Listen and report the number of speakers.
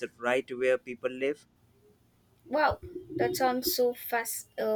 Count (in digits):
2